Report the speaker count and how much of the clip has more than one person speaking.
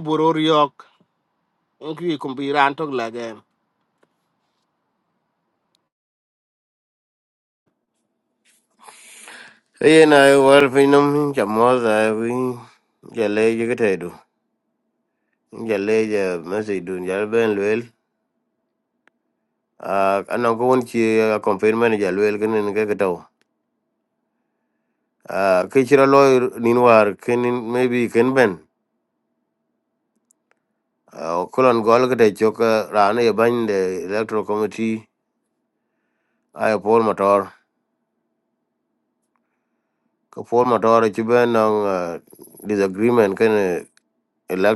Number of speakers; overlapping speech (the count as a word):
two, no overlap